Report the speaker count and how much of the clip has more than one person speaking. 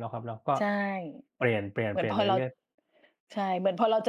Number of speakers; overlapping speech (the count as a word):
two, about 12%